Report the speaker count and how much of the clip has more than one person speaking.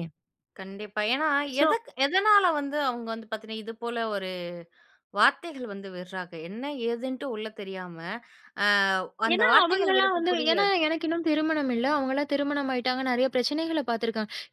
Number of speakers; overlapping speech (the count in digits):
2, about 10%